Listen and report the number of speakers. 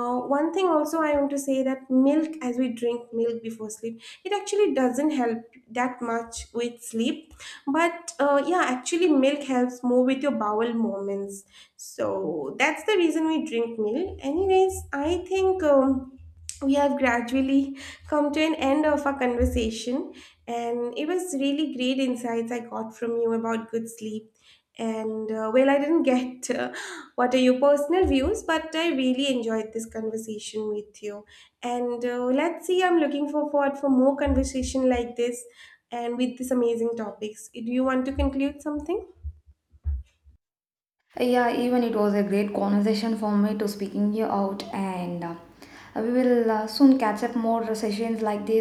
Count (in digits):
2